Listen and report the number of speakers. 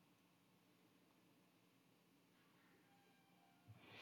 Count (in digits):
0